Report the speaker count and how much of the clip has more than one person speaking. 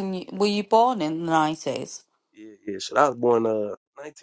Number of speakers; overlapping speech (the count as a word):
two, no overlap